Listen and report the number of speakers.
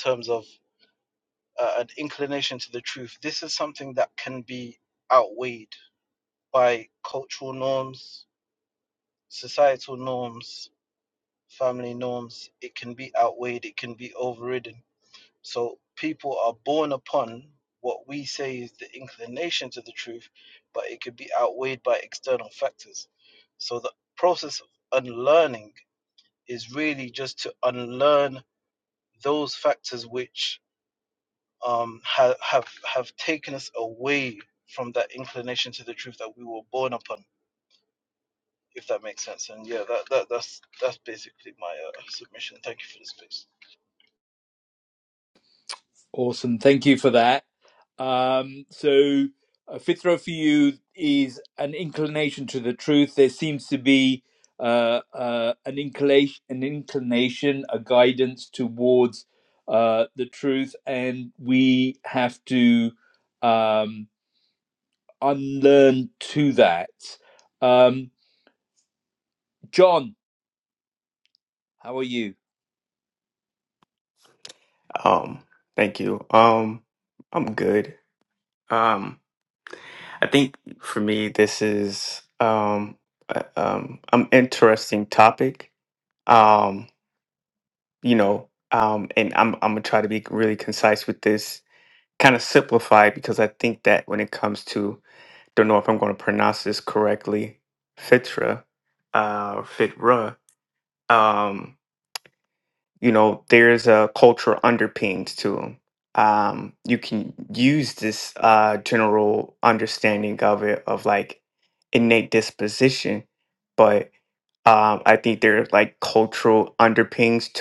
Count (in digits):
3